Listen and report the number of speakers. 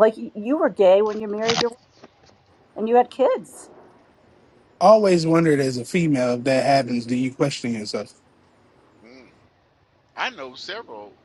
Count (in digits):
3